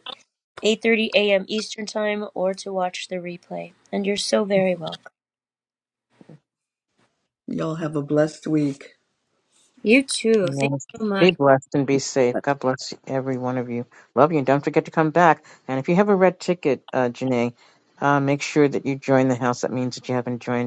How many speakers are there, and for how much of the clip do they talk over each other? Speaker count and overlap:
three, about 3%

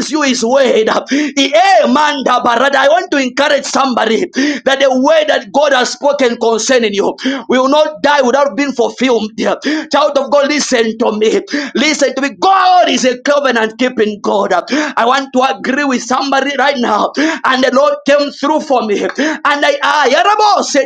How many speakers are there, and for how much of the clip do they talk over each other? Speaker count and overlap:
one, no overlap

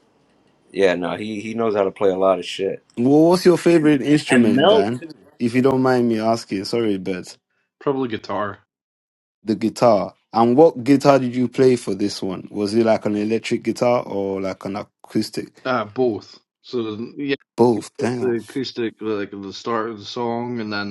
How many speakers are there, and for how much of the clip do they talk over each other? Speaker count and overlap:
three, about 4%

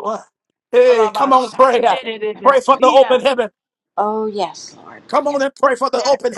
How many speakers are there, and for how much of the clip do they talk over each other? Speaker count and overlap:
three, about 35%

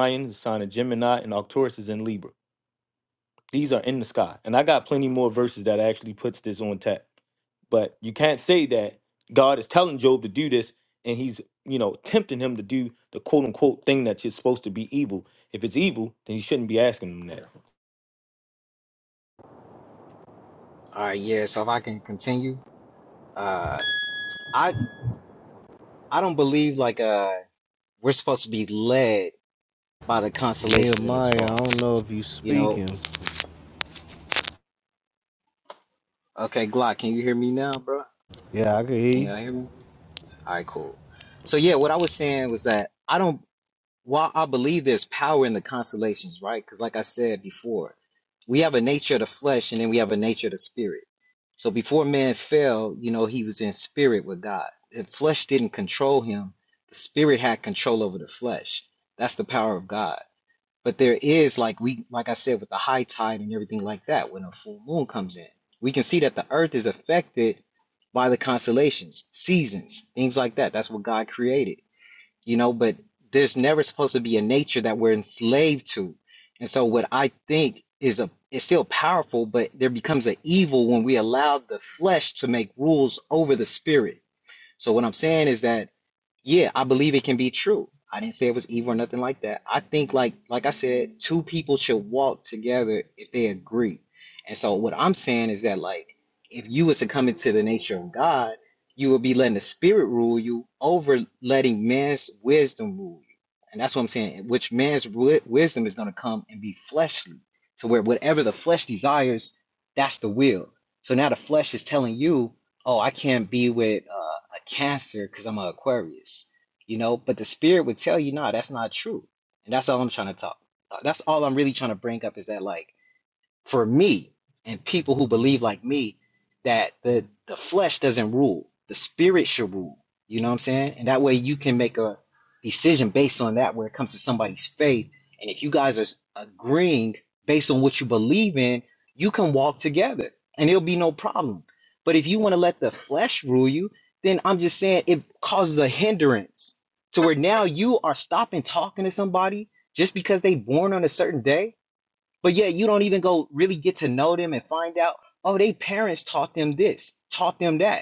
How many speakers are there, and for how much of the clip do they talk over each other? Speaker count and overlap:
three, about 1%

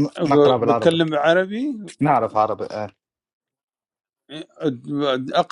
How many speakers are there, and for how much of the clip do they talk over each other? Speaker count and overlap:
two, about 15%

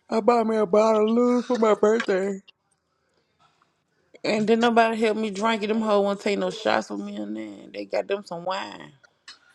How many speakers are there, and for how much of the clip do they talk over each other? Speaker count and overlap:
one, no overlap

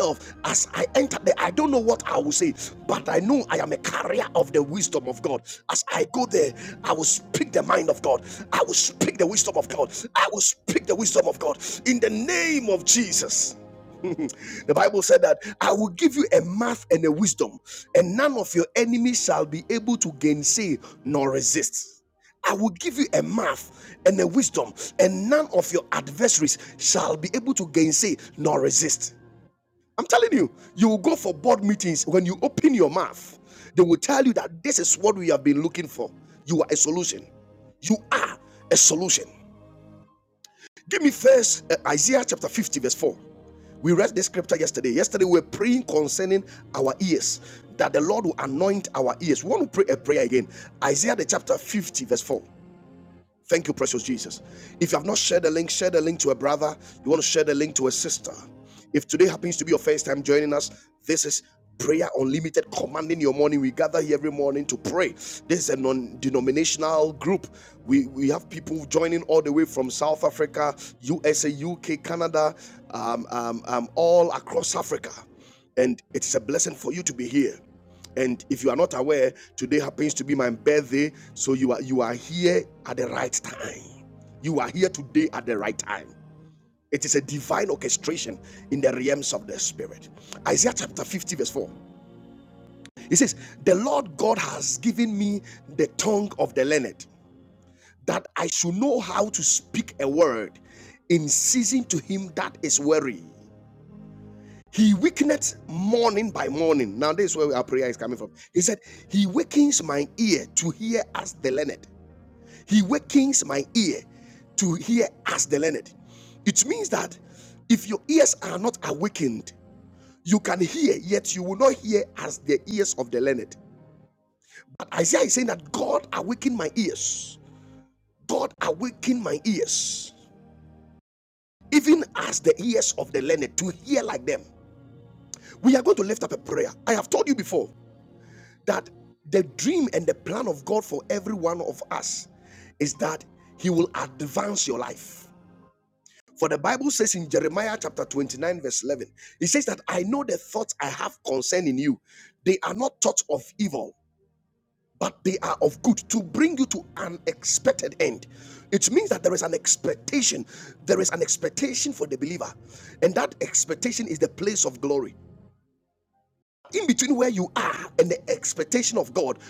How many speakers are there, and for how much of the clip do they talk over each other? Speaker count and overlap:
one, no overlap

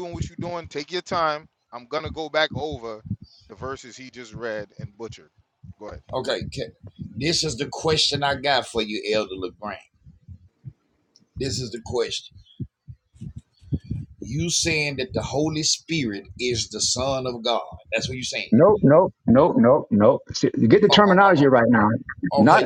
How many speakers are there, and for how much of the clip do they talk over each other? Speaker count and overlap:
three, about 4%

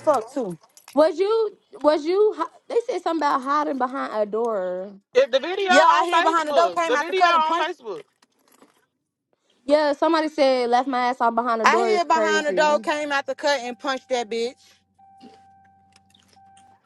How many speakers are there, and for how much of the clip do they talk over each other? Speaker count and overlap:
three, about 19%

